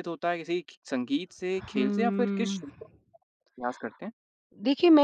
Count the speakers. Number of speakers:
2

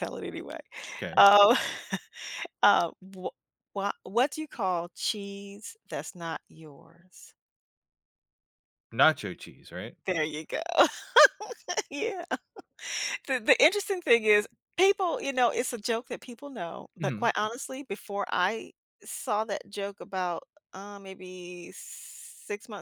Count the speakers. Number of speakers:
2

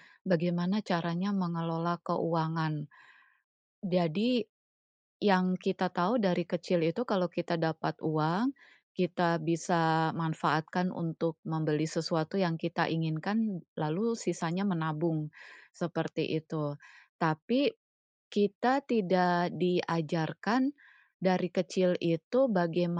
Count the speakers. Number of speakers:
1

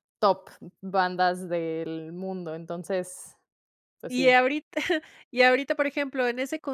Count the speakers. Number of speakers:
2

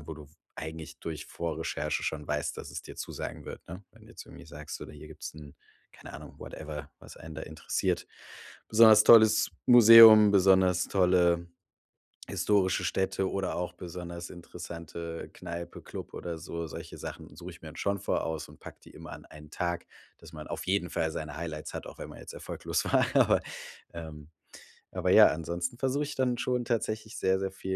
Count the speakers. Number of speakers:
1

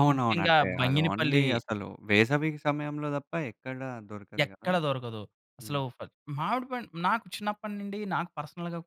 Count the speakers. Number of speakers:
2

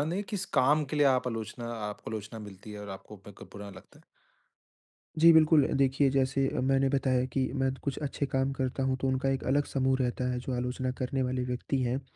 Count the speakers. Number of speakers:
2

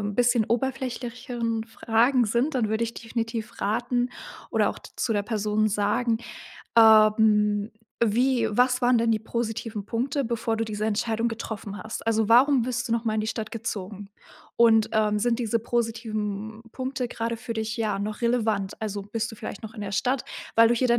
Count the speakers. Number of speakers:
1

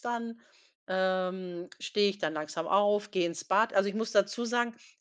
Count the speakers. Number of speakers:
1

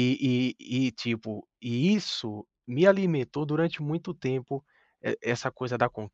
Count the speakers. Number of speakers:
1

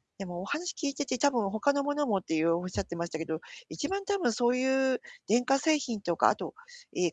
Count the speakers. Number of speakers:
1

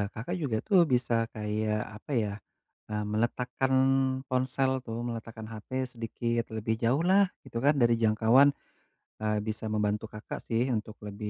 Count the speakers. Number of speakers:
1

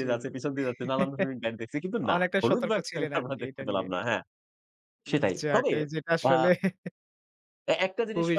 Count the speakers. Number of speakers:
2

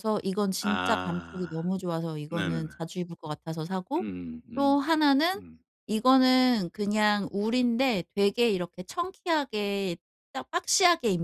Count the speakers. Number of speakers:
2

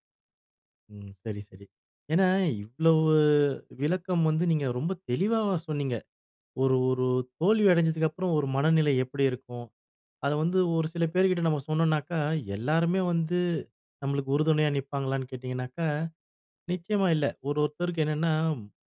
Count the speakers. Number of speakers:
1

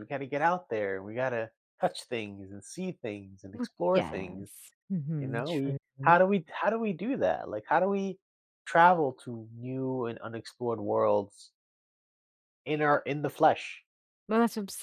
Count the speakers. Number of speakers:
2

